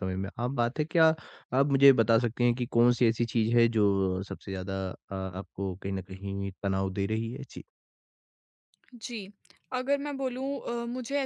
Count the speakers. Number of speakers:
two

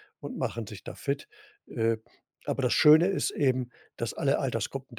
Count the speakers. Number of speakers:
one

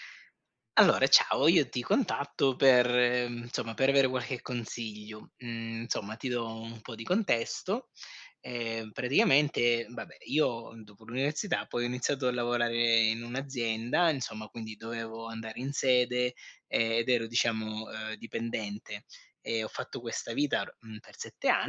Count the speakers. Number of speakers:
one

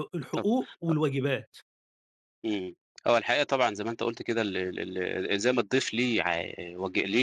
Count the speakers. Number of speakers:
two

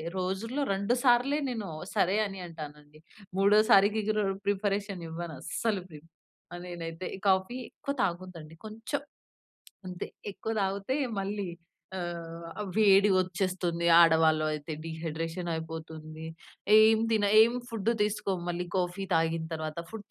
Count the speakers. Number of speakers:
one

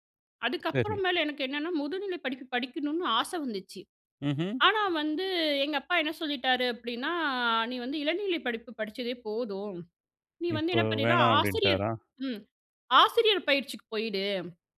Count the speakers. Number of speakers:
two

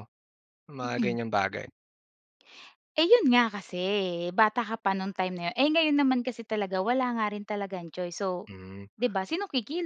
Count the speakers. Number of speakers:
two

